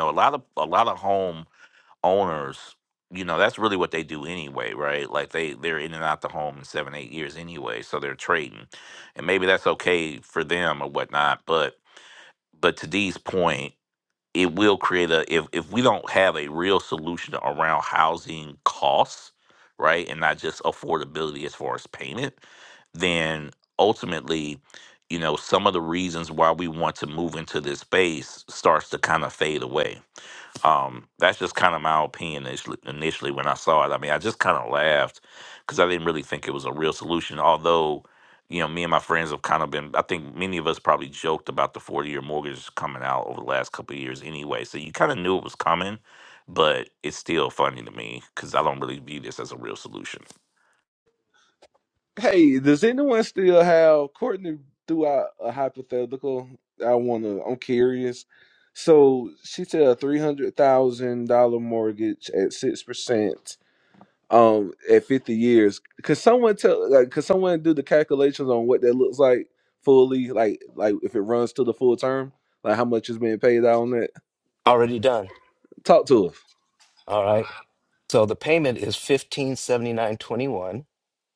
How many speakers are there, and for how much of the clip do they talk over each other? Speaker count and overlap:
three, no overlap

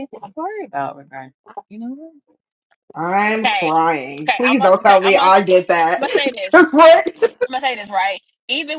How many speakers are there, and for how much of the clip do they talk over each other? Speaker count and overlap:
three, about 20%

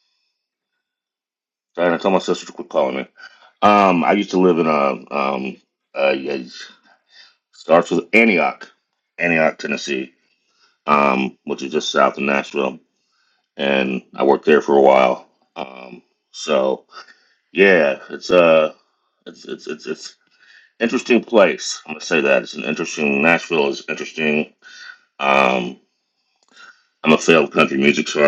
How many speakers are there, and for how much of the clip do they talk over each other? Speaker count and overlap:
one, no overlap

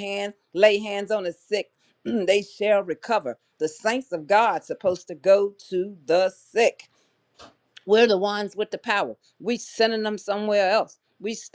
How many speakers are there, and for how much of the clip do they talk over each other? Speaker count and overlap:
one, no overlap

